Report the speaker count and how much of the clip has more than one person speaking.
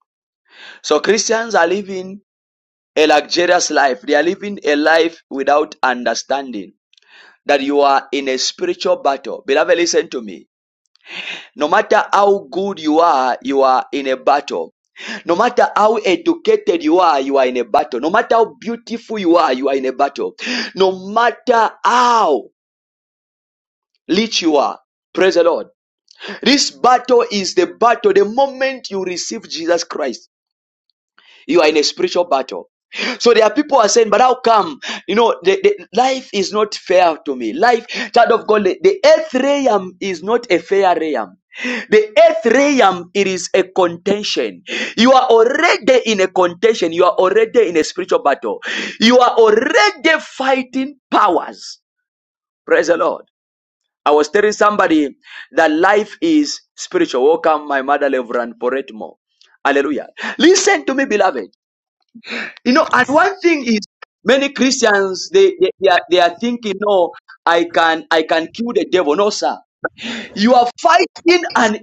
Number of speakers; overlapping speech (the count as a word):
one, no overlap